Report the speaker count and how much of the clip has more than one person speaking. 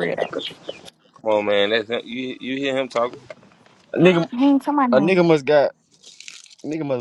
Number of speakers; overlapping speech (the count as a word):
three, about 3%